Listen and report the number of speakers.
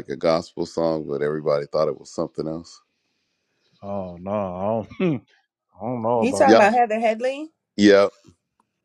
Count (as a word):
three